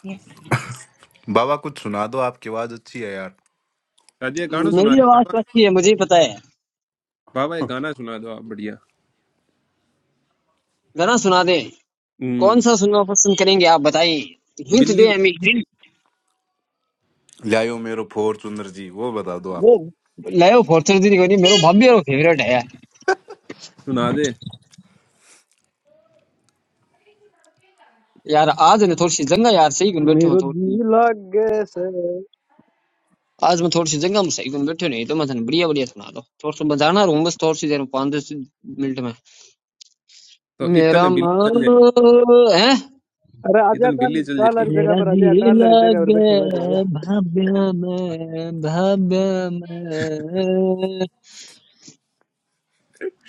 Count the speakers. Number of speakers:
4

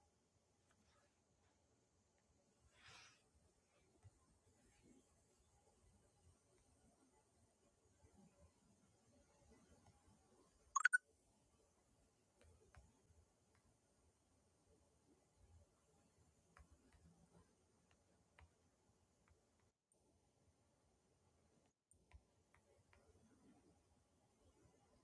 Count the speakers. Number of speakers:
0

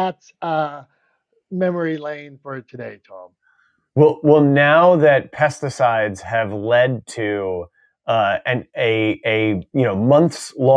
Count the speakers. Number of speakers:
2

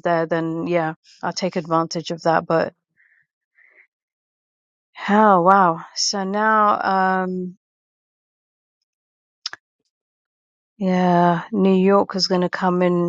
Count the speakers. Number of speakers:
1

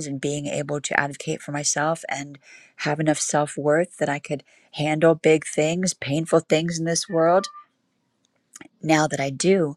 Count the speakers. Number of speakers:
1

